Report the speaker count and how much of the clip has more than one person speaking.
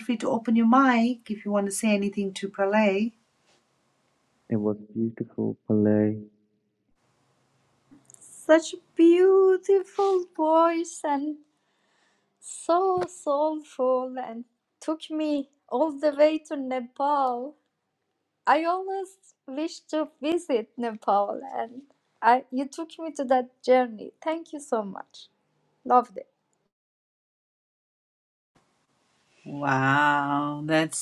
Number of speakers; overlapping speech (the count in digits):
3, no overlap